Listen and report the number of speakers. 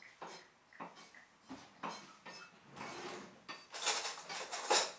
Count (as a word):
zero